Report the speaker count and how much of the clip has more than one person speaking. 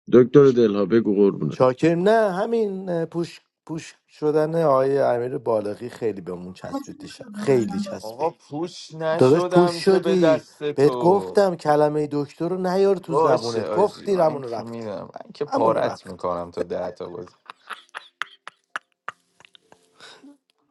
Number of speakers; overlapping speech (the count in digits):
3, about 20%